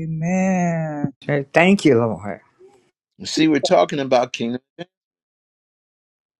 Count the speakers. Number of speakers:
3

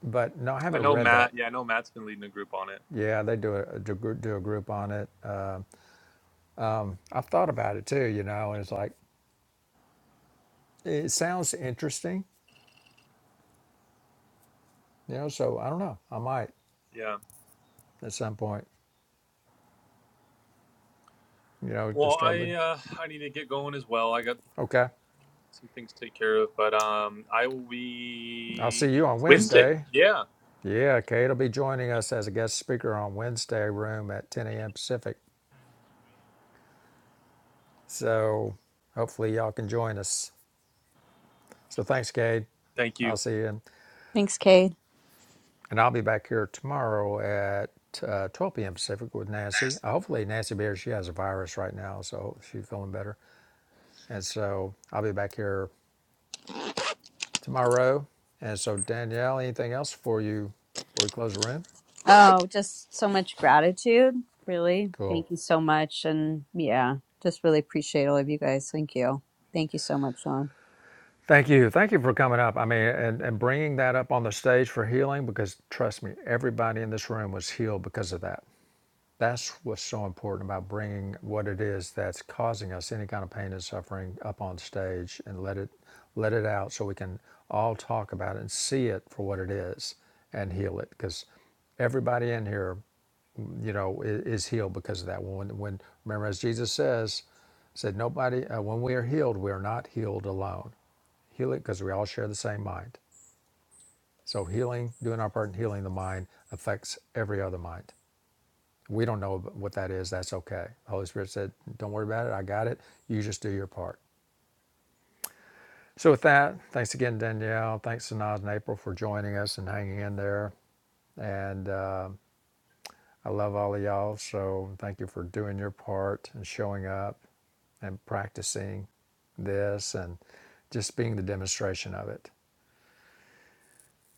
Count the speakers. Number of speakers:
3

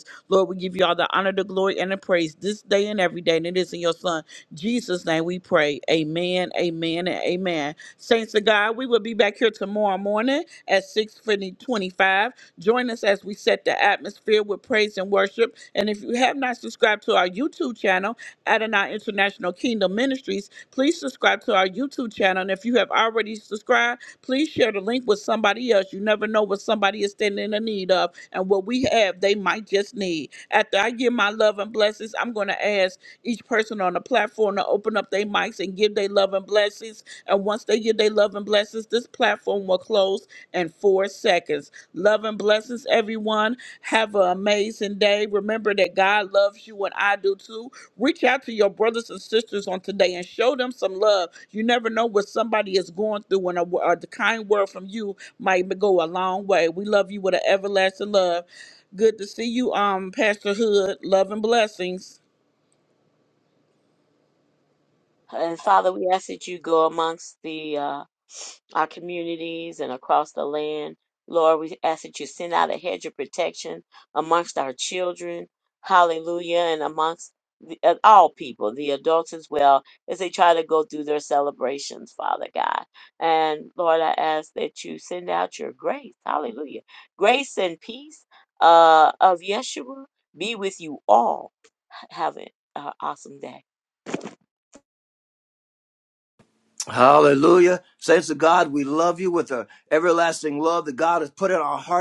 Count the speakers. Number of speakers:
3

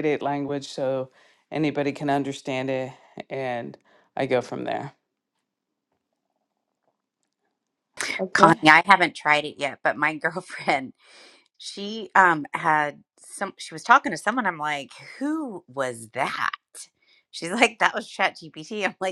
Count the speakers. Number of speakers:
2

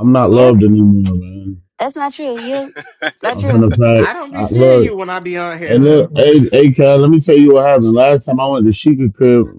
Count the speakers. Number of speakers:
3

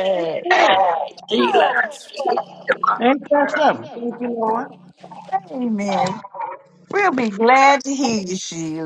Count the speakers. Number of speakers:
3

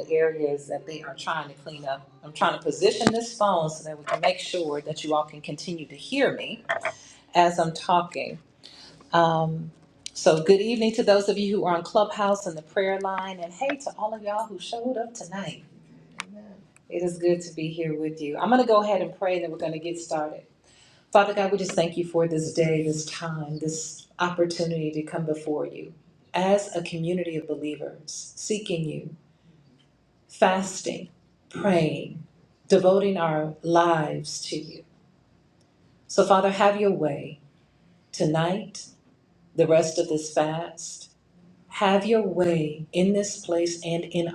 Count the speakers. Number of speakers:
1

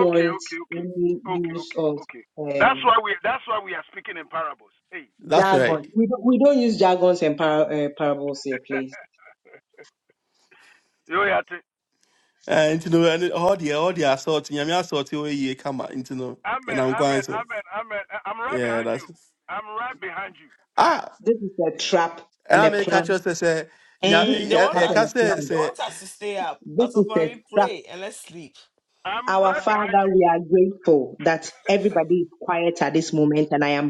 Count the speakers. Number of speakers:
4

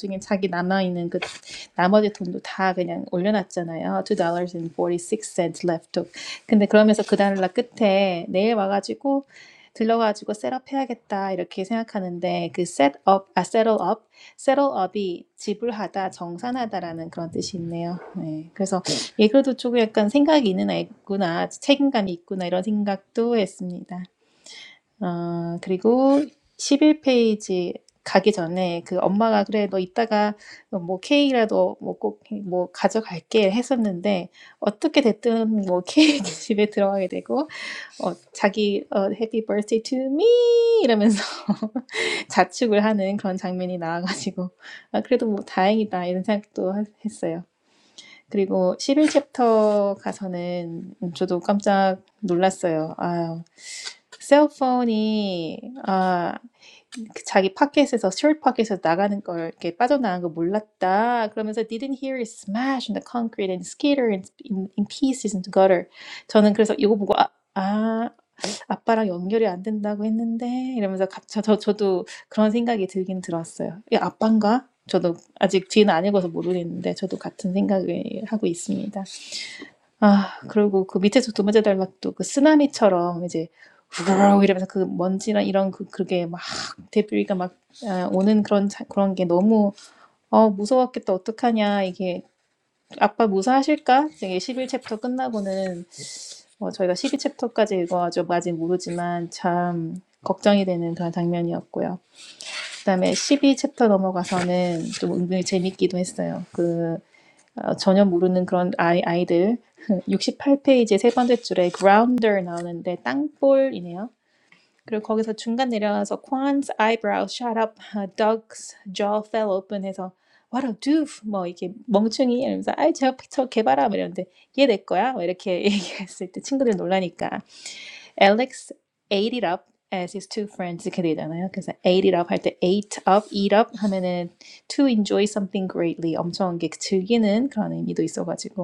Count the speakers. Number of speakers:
1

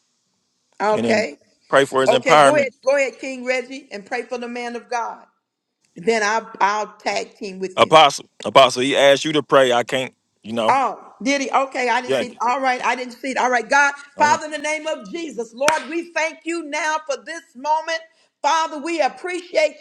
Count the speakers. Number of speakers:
2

